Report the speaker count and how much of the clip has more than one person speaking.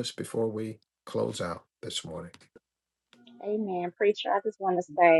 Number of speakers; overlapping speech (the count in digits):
2, no overlap